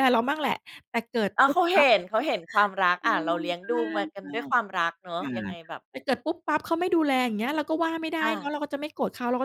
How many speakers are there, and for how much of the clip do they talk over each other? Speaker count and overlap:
2, about 18%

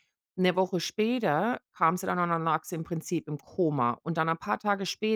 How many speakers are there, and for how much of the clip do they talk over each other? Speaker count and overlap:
1, no overlap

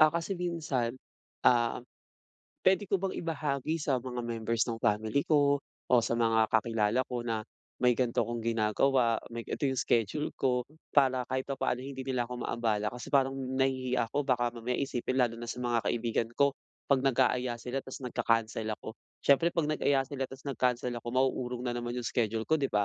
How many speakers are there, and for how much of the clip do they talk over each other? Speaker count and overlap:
1, no overlap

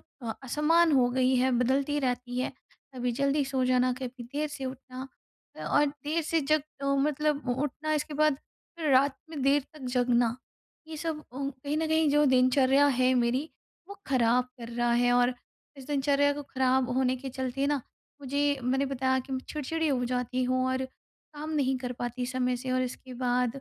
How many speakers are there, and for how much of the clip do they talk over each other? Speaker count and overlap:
1, no overlap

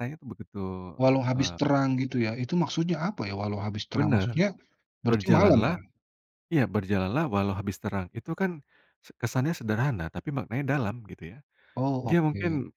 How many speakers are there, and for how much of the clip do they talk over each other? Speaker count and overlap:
2, about 15%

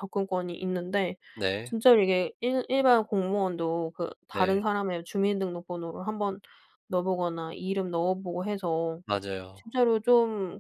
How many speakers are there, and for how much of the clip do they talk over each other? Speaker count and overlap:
2, about 3%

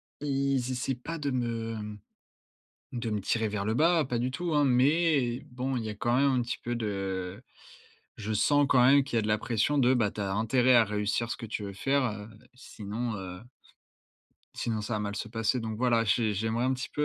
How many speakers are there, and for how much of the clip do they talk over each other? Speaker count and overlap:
1, no overlap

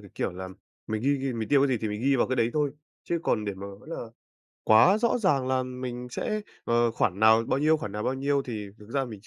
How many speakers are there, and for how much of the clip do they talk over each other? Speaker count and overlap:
1, no overlap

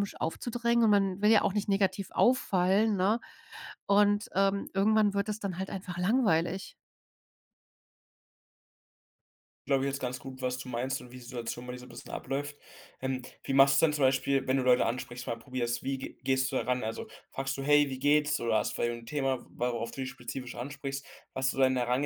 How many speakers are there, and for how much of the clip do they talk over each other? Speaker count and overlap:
2, no overlap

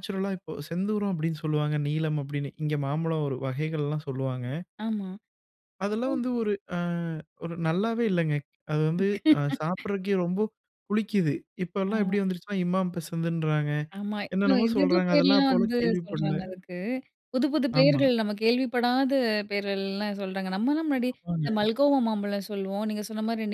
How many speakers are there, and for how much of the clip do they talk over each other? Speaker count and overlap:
2, about 13%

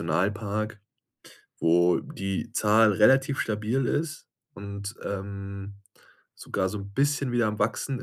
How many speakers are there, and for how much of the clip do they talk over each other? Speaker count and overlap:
1, no overlap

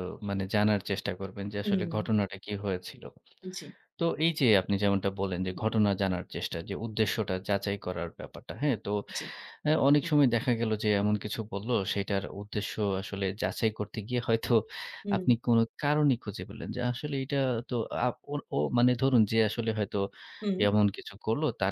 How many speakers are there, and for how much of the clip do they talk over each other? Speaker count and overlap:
2, about 3%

